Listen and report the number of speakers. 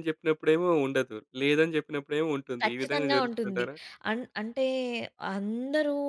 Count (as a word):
two